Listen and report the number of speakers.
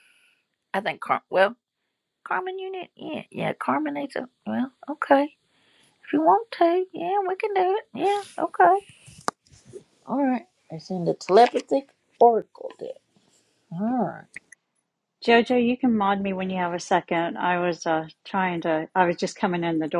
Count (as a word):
two